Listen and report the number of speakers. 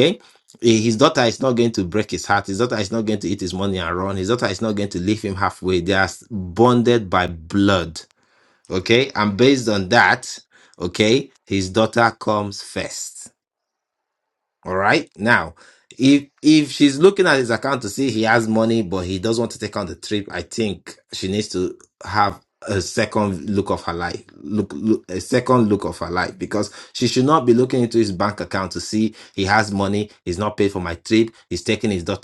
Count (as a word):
one